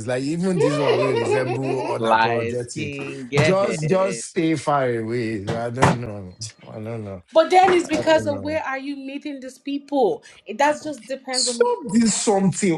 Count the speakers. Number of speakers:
three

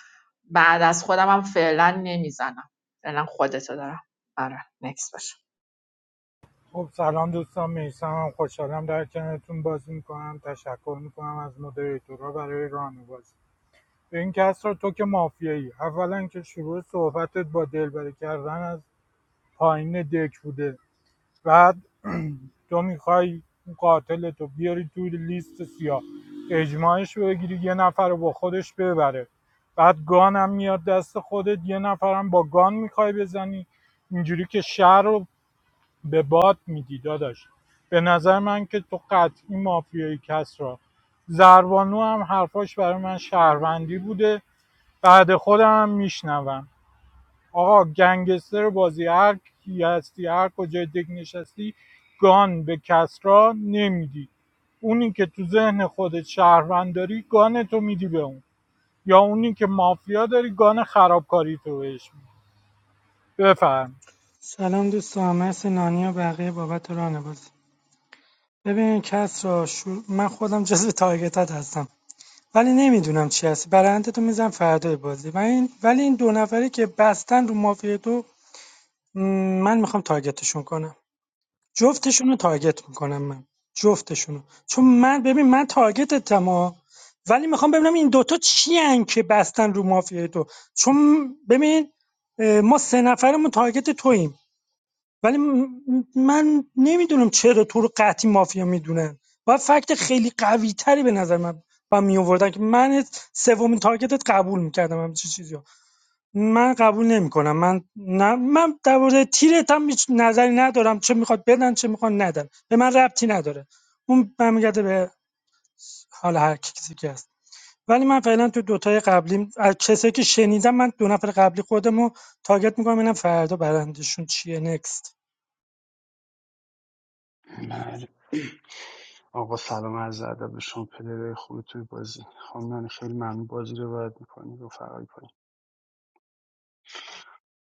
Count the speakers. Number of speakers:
four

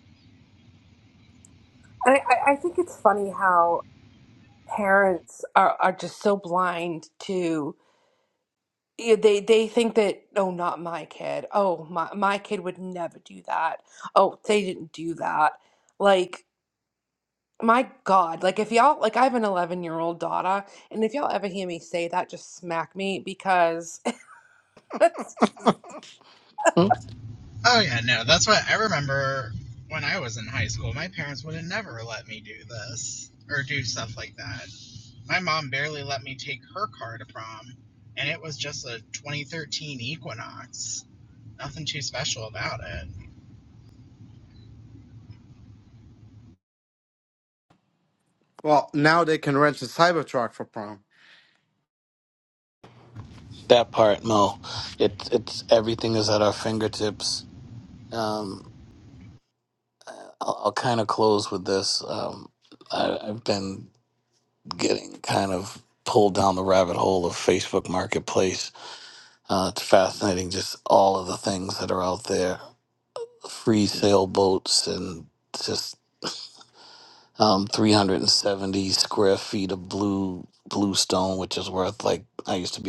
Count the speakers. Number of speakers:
four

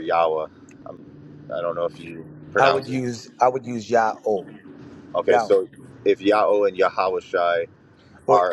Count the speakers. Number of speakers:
two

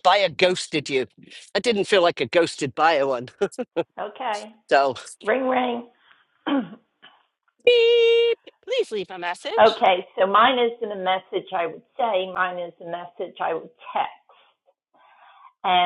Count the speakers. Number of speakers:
three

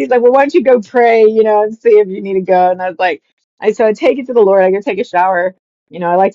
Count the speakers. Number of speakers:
one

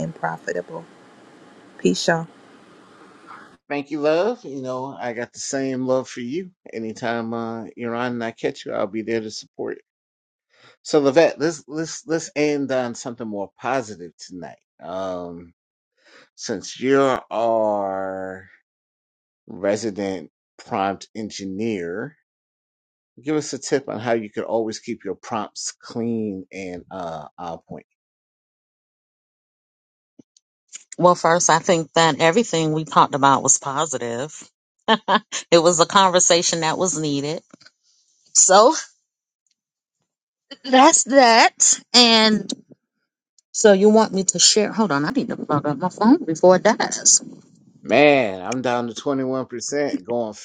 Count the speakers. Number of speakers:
three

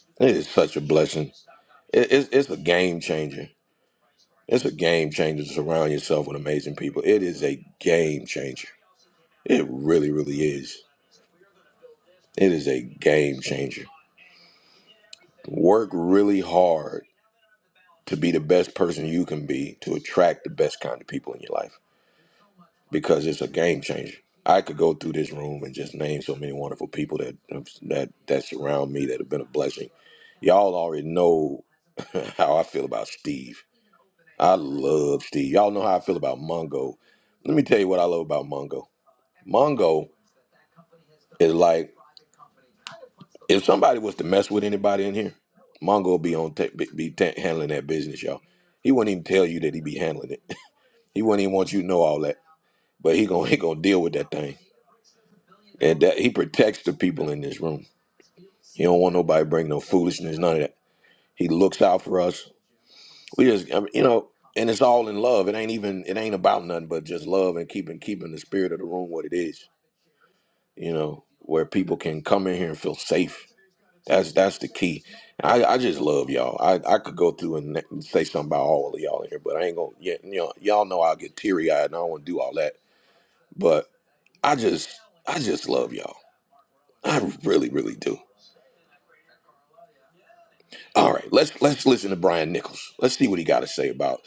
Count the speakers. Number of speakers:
one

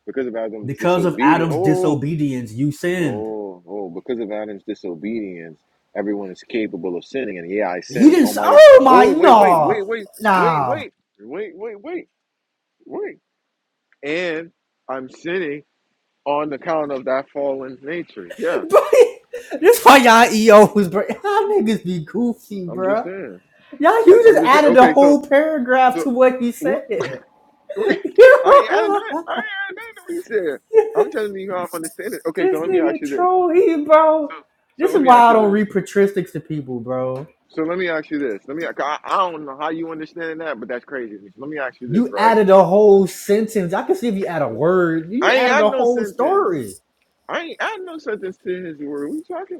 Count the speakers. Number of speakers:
two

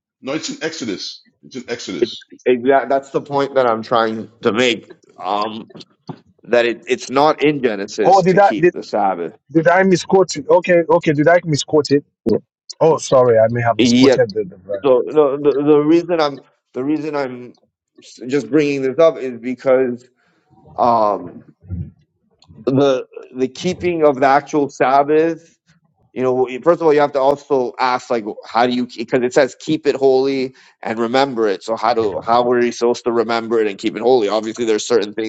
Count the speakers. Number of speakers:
three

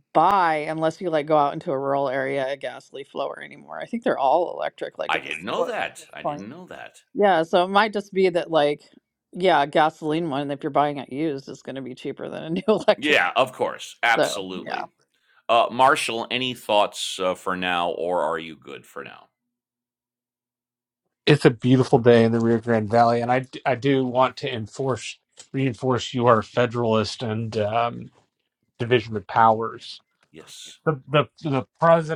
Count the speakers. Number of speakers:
three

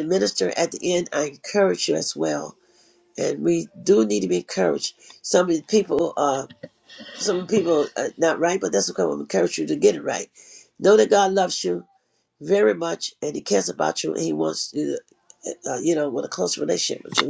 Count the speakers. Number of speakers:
one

